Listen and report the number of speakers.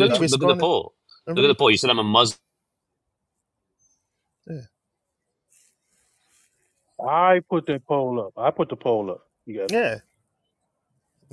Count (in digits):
3